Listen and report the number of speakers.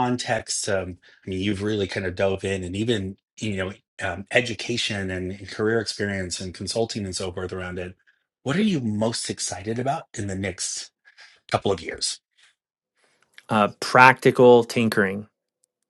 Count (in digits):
2